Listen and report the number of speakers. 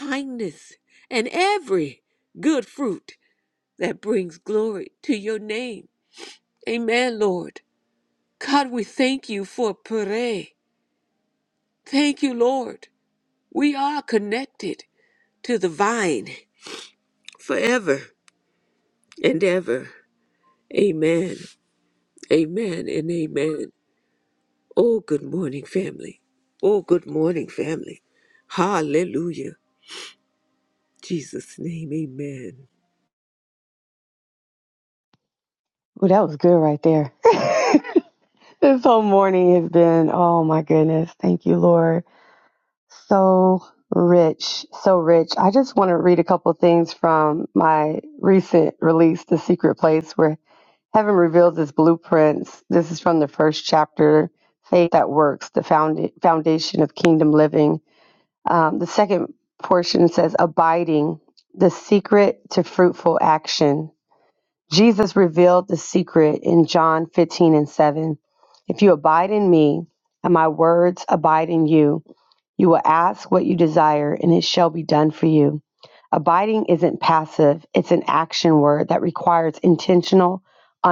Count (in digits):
2